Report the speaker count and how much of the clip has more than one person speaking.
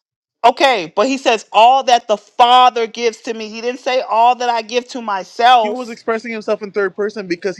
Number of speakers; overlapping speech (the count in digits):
2, about 2%